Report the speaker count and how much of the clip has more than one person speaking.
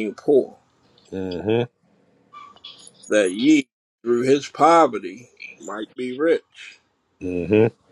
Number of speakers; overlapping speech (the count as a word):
two, no overlap